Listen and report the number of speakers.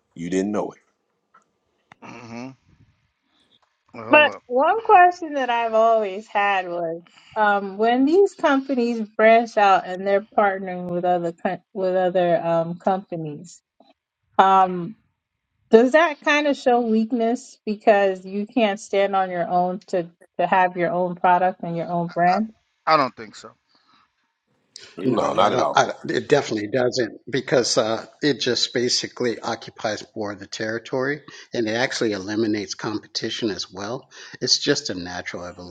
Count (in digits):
4